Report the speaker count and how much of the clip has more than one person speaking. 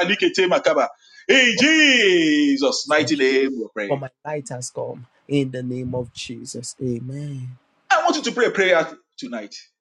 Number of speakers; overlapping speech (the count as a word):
two, about 4%